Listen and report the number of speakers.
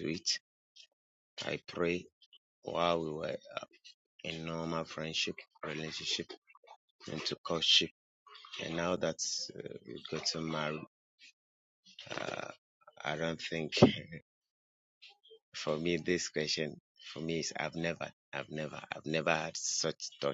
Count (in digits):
1